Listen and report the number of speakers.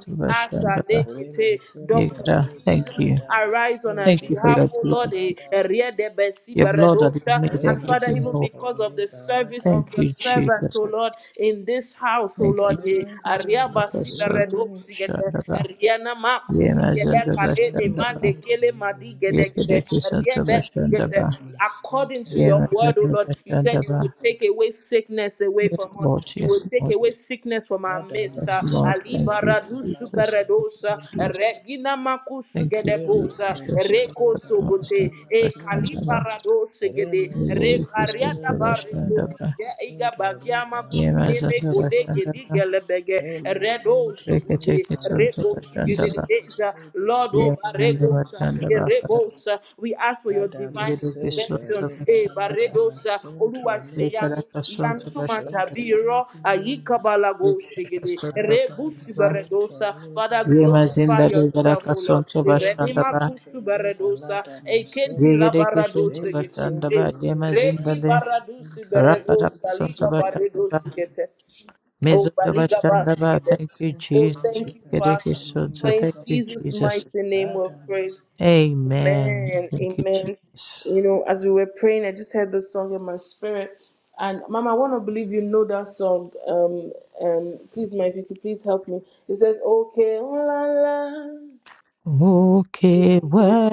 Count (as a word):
three